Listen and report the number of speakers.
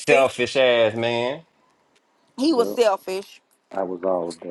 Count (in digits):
3